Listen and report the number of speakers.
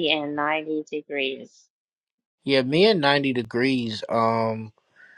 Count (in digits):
2